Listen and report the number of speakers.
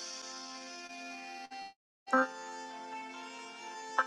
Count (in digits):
0